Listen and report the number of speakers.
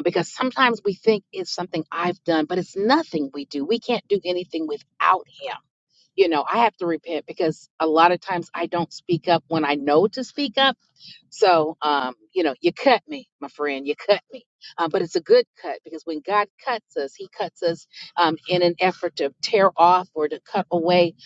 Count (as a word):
one